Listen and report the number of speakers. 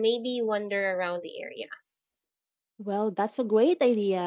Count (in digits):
2